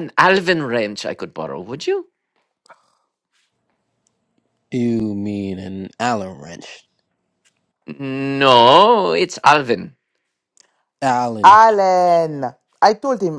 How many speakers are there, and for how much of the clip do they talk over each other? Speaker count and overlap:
3, about 1%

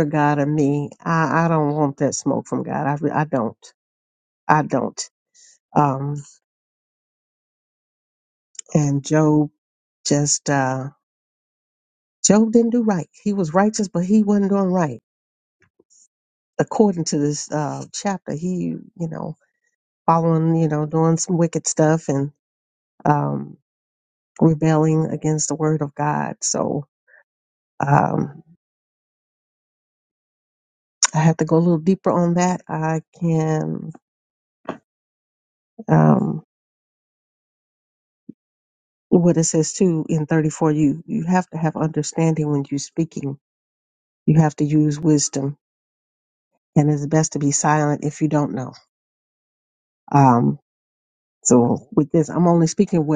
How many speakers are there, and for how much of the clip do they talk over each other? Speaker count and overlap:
1, no overlap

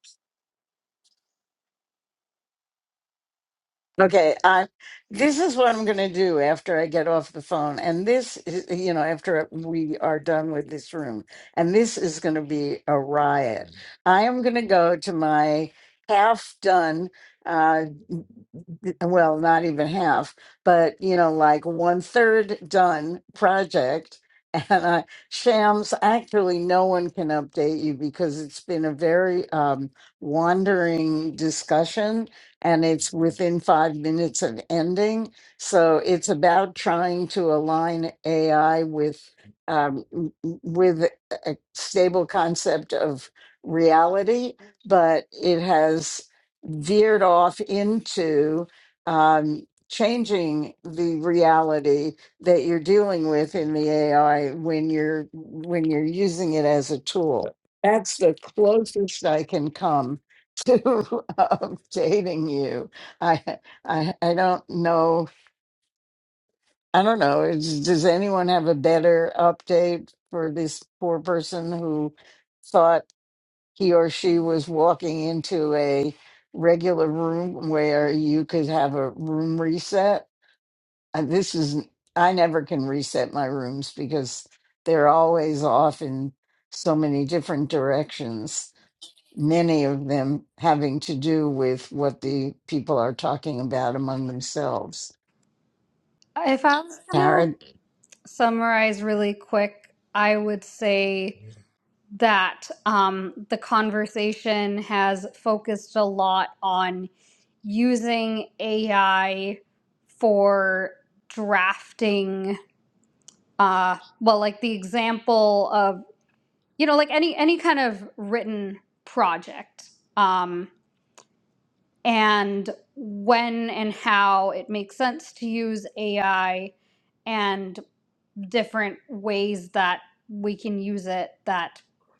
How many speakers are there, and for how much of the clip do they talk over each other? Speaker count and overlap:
2, under 1%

